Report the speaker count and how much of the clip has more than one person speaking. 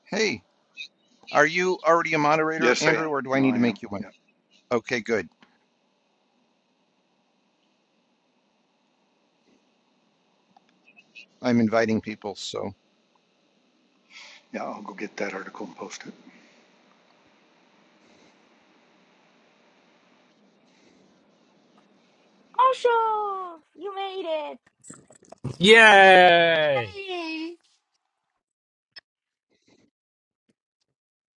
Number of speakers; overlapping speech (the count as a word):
four, about 5%